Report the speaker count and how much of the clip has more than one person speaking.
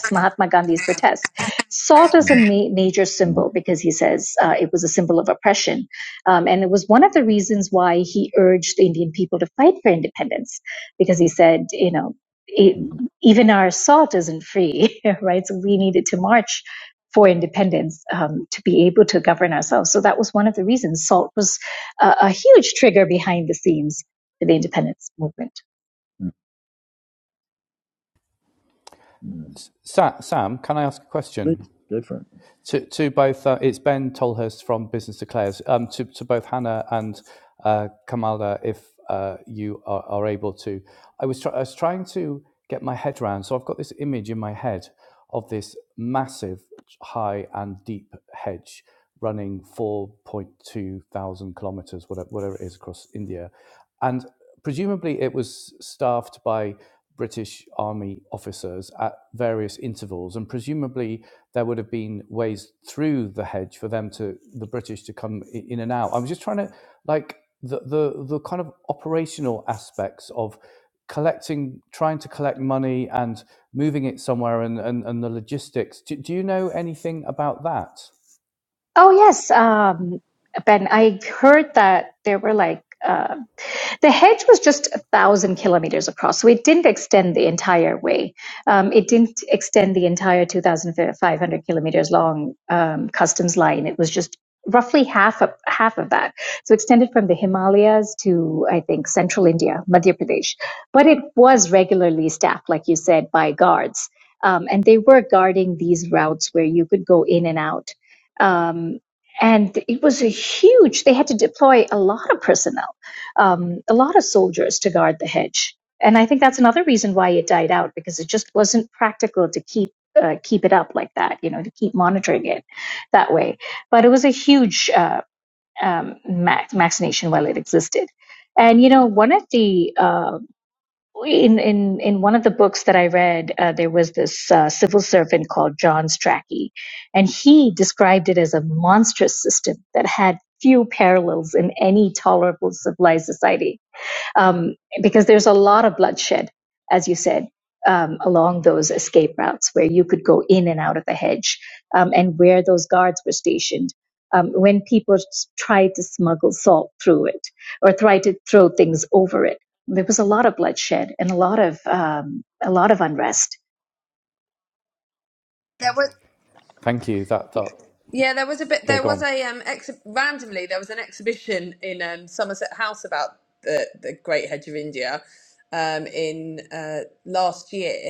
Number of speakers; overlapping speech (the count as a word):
four, about 1%